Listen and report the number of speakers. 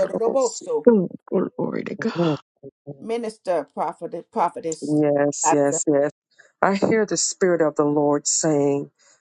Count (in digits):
3